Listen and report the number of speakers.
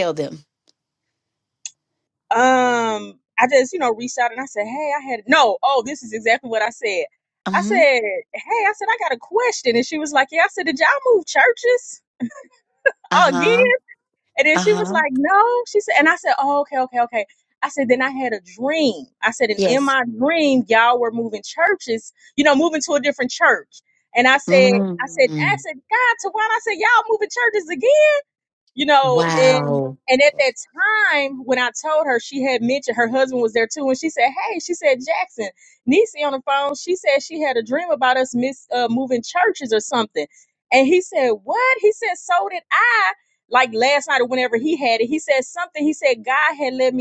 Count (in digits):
2